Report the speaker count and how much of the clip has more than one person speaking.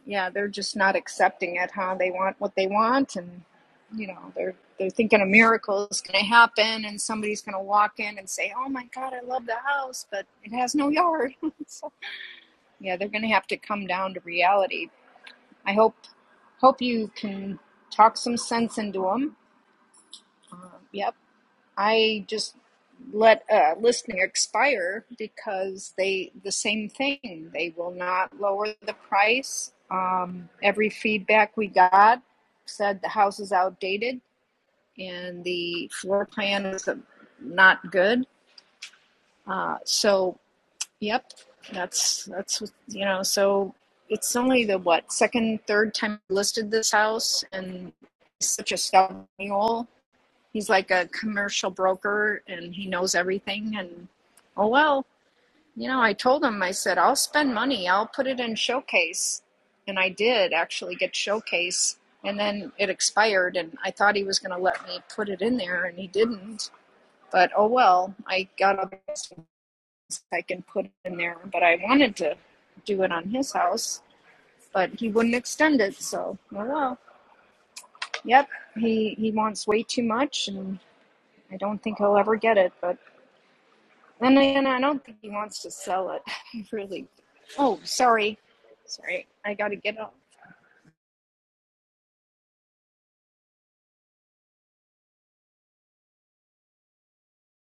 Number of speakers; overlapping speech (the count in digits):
1, no overlap